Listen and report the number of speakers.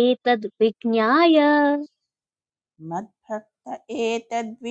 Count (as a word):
two